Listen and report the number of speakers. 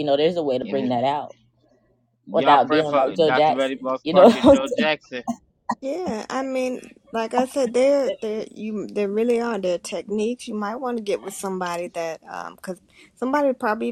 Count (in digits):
3